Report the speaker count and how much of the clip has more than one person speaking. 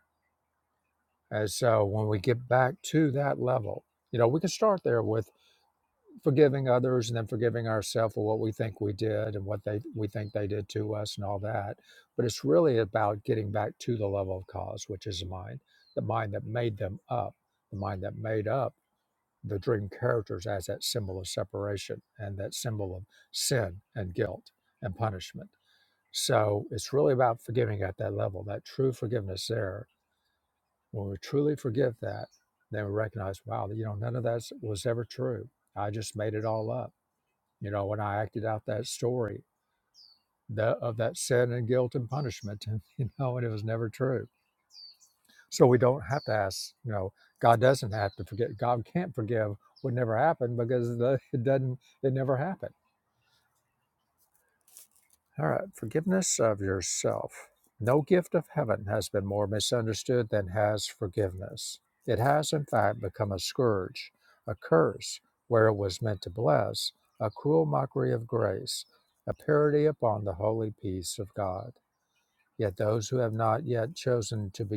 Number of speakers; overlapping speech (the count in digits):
1, no overlap